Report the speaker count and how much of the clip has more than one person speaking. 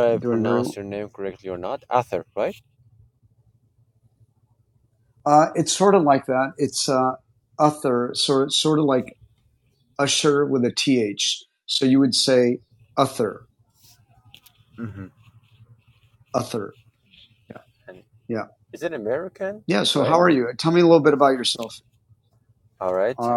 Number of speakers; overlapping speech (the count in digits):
2, about 5%